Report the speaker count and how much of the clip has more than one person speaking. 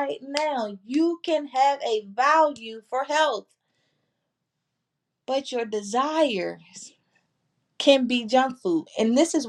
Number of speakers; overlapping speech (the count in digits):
1, no overlap